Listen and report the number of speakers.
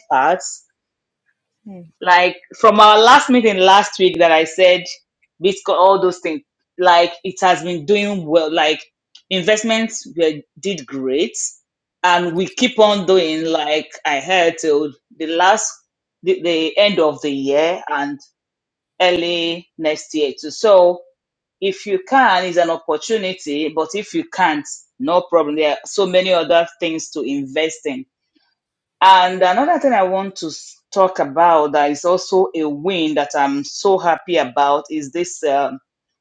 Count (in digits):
1